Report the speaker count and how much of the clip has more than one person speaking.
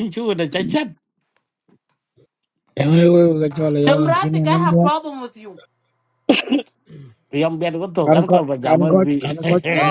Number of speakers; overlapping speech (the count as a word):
three, about 25%